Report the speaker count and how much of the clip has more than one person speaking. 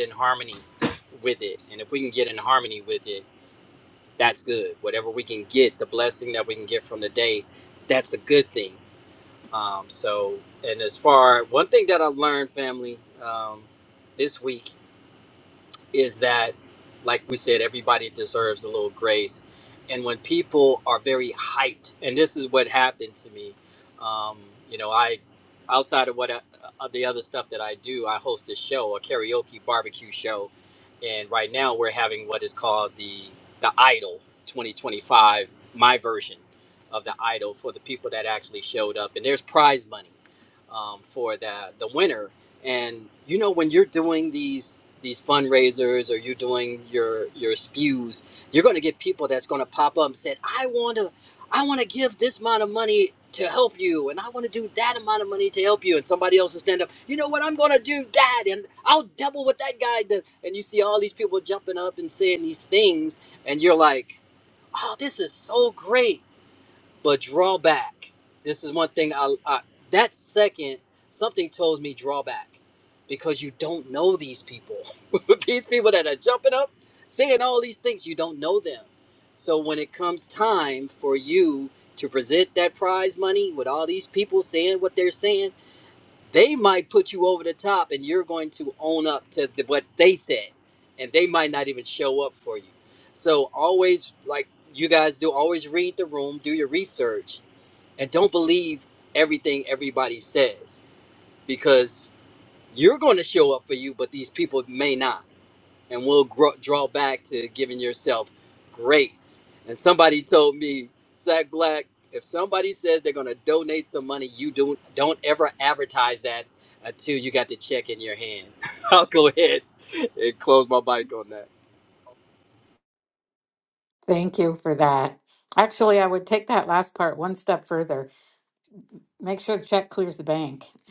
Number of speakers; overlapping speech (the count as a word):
two, no overlap